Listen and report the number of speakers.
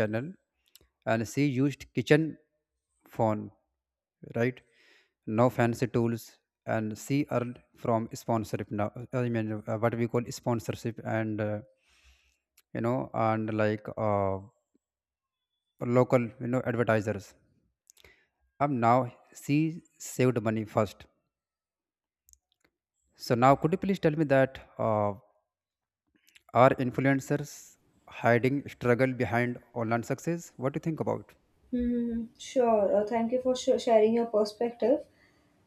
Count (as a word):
two